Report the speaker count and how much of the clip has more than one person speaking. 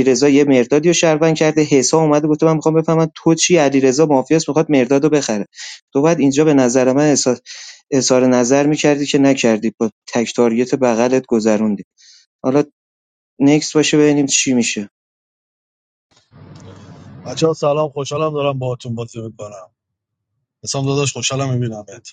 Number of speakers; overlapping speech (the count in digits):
2, no overlap